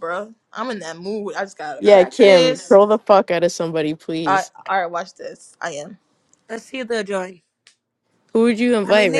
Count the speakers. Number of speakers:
3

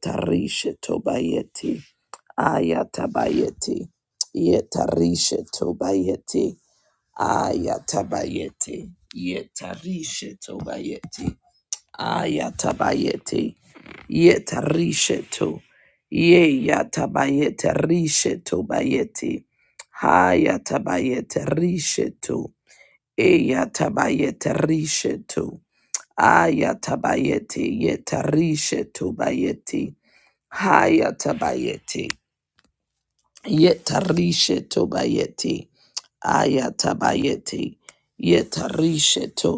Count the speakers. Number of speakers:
1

